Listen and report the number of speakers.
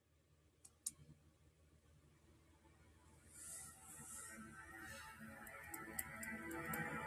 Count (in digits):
0